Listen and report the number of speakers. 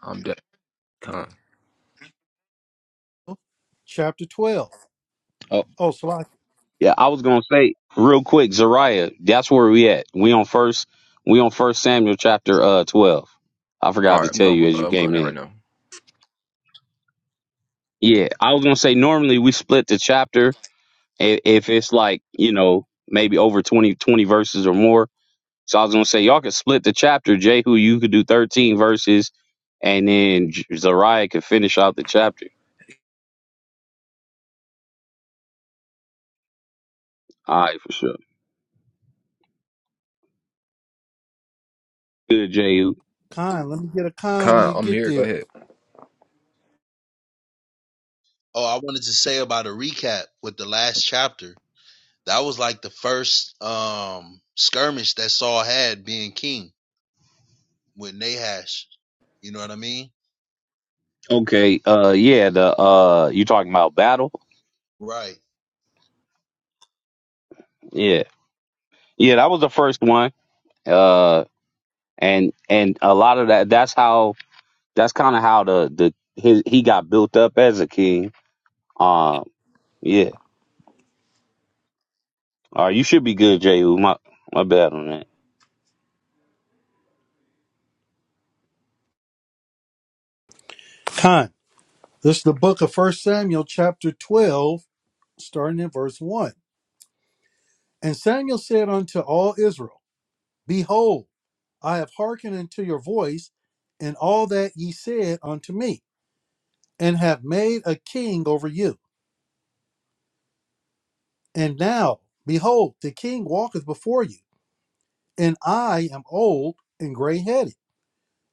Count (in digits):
4